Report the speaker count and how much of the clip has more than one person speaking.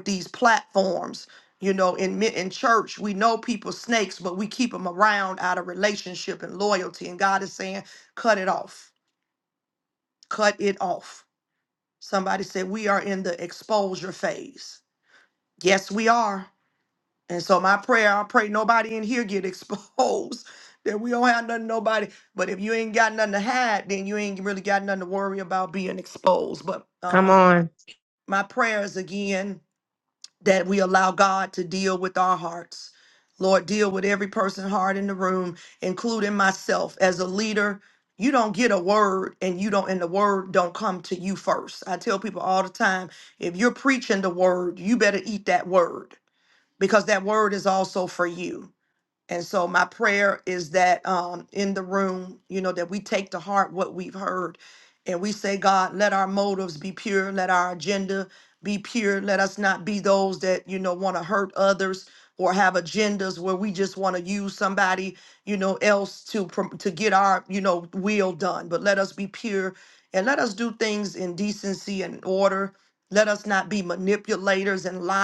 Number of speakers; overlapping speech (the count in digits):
1, no overlap